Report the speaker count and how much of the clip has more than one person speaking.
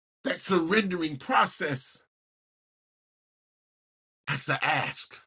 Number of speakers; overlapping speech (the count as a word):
one, no overlap